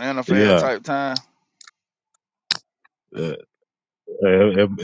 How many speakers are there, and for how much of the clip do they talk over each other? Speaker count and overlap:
2, about 9%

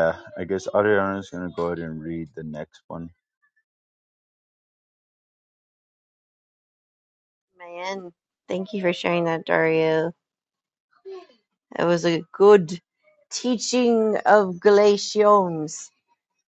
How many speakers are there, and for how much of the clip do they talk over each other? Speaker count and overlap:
2, no overlap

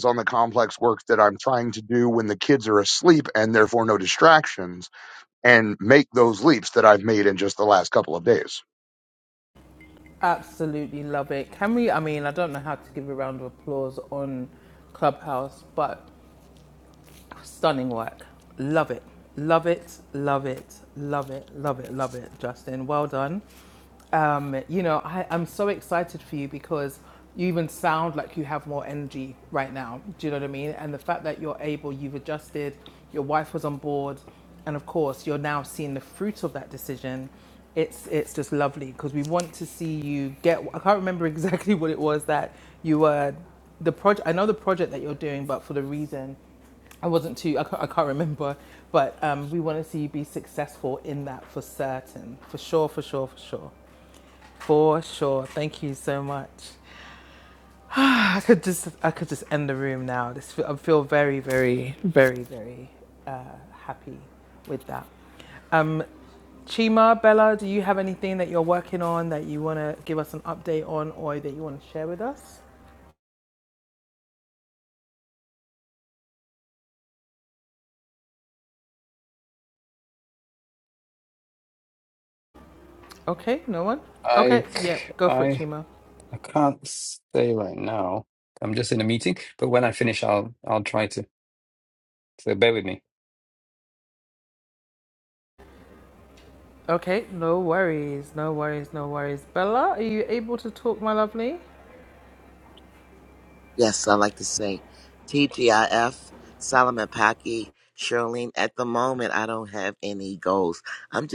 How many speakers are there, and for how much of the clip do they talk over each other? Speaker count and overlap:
4, about 1%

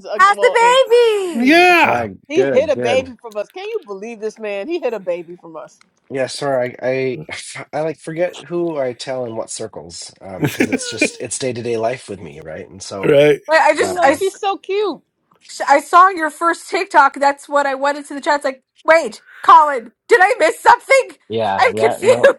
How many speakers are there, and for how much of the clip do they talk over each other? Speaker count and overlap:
4, about 14%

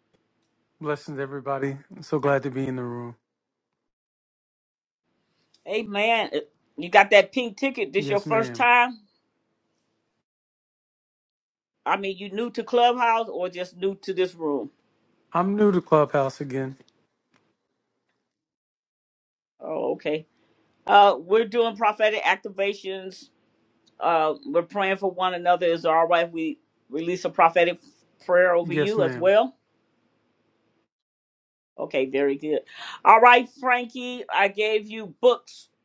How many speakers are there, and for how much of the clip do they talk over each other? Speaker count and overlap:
2, about 3%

